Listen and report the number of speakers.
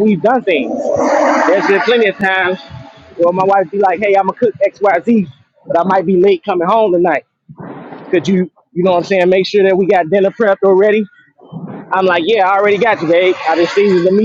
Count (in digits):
1